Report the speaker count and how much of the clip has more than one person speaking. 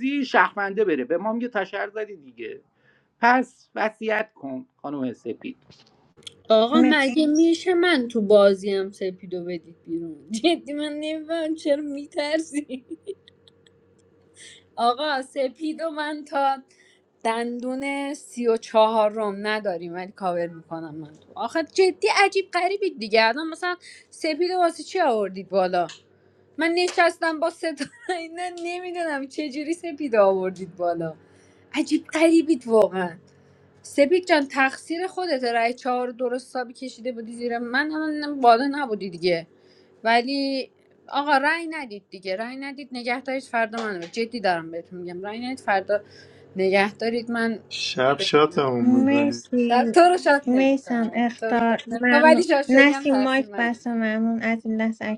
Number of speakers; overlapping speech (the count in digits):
4, about 7%